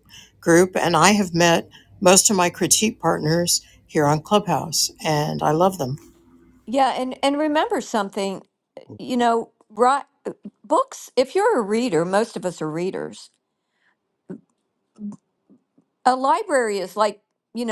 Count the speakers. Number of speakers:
two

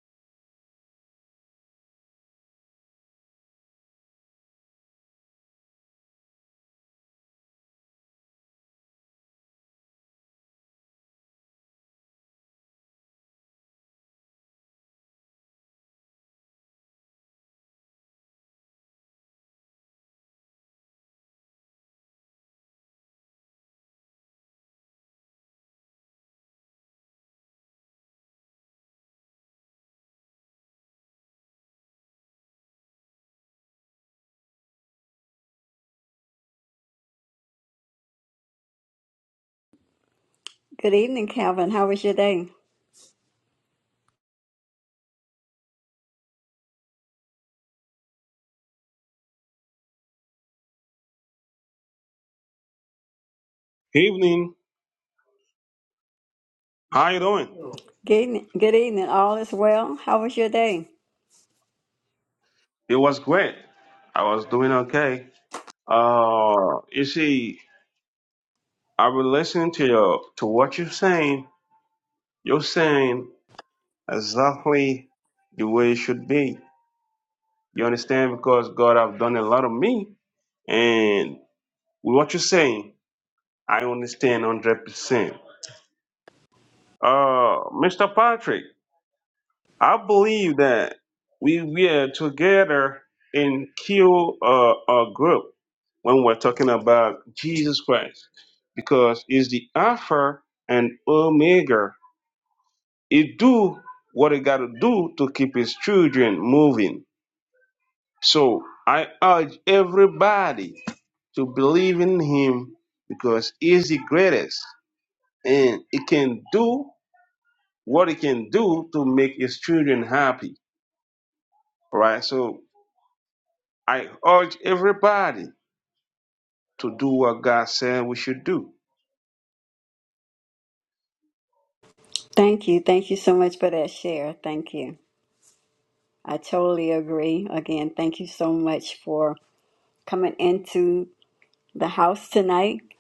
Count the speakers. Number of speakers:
two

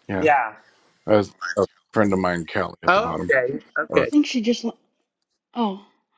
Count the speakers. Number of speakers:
three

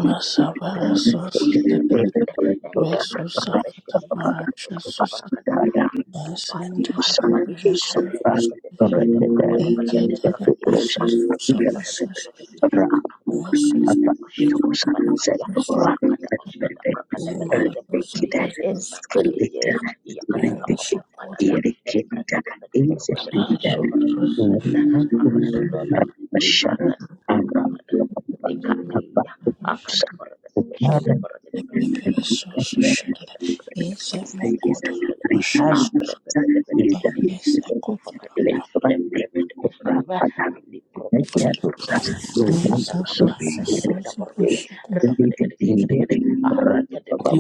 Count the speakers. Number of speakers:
three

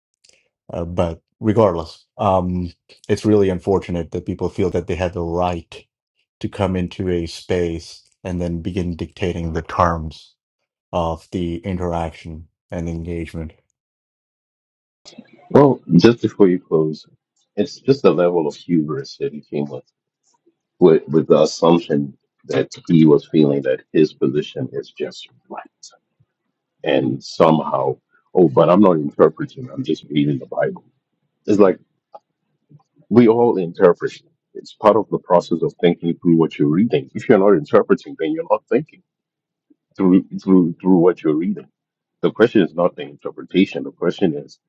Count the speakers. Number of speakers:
two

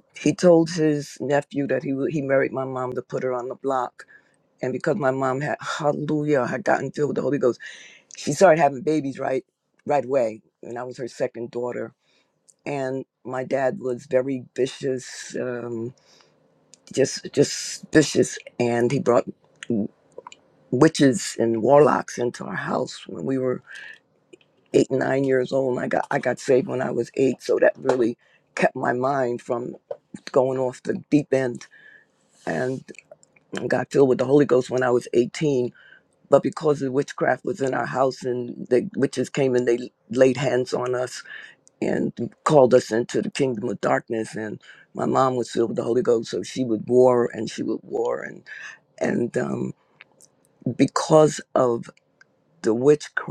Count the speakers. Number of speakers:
one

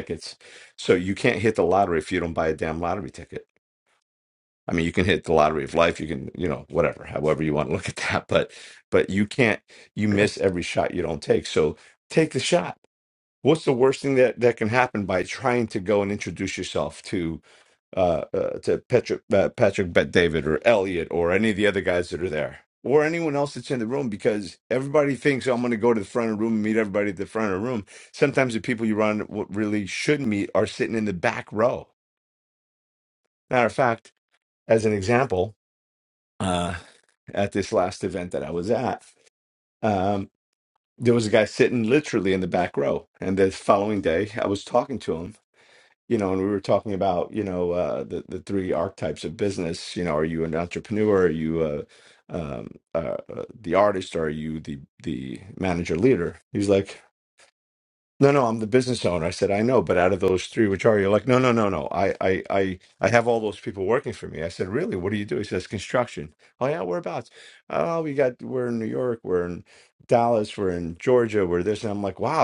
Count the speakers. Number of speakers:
one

